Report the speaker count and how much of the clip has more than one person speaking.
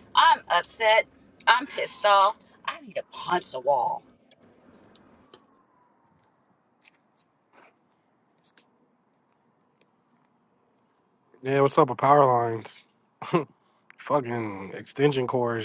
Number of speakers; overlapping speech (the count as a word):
two, no overlap